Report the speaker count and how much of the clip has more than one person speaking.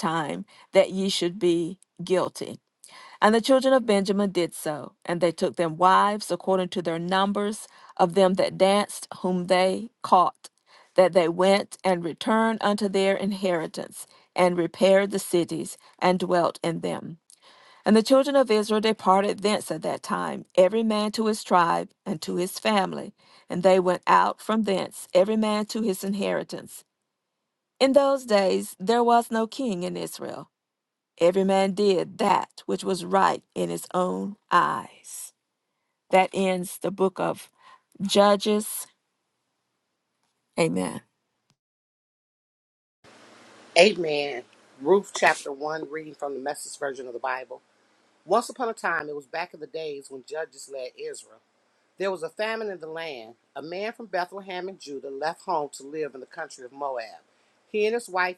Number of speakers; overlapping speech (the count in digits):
2, no overlap